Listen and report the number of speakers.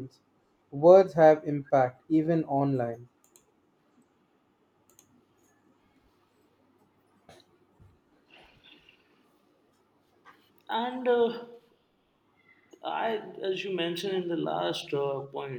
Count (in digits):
2